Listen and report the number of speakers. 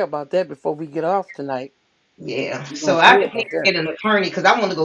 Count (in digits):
2